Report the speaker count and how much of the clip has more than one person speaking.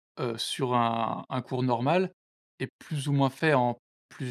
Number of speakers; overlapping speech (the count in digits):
1, no overlap